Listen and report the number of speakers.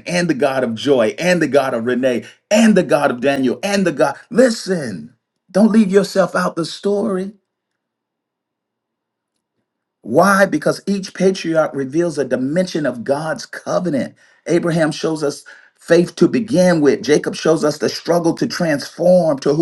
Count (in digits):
1